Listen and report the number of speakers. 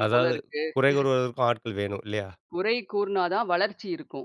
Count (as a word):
two